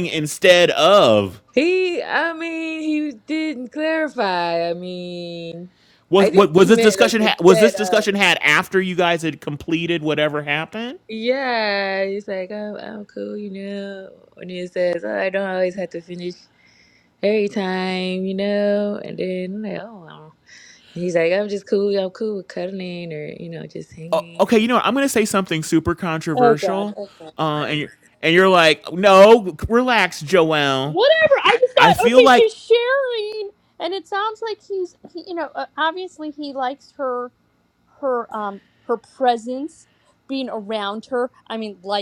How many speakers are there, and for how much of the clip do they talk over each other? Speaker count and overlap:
three, about 9%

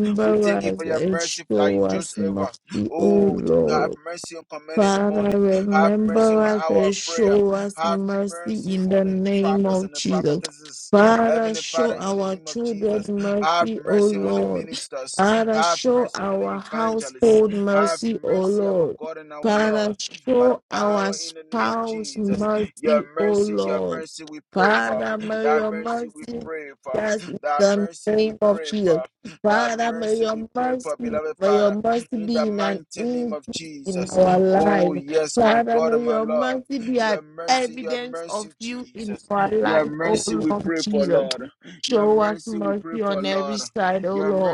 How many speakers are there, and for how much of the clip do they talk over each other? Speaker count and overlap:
two, about 72%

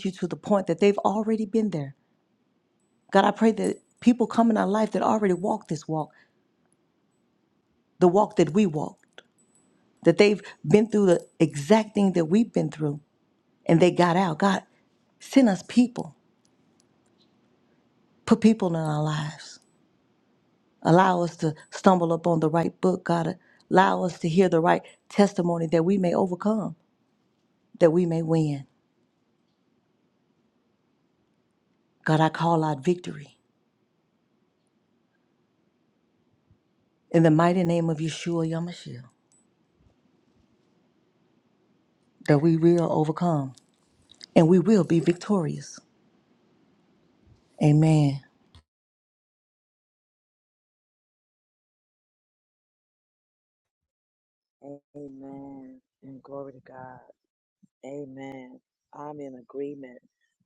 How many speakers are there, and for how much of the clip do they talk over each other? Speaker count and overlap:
two, no overlap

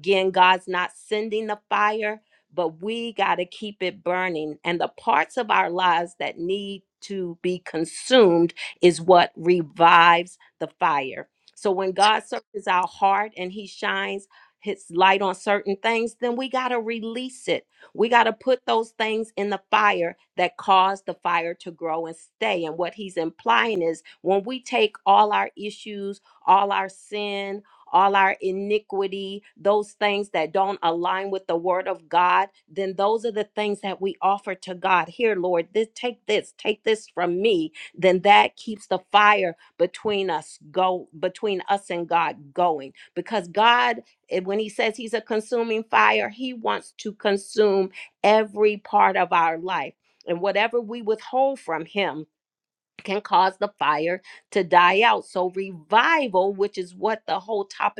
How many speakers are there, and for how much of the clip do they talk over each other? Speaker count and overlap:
one, no overlap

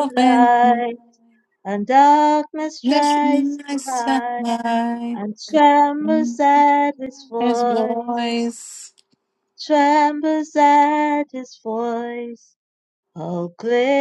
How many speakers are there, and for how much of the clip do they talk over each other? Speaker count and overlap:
two, about 20%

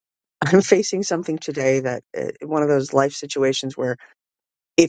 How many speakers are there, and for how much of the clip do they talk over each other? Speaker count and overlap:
one, no overlap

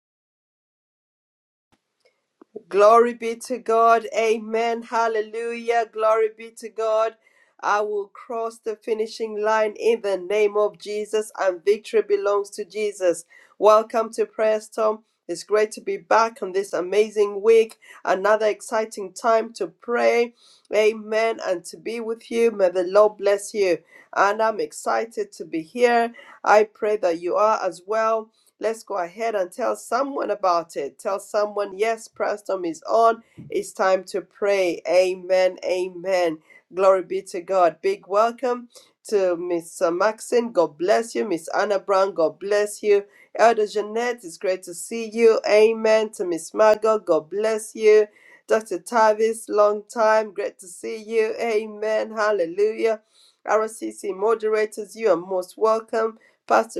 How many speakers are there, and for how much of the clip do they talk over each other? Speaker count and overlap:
one, no overlap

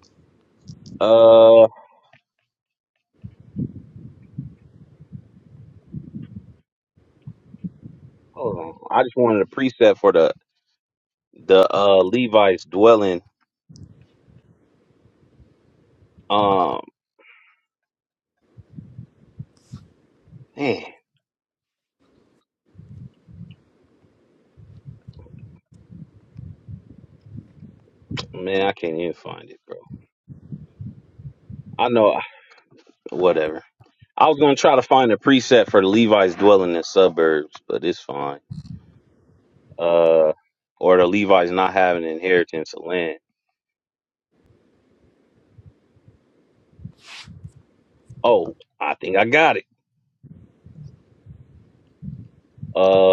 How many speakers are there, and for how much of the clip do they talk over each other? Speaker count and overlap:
one, no overlap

